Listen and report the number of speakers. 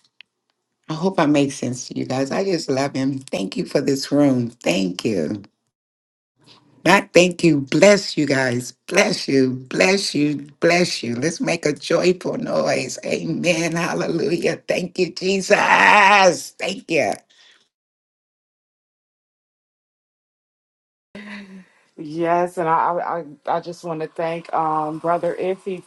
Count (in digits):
2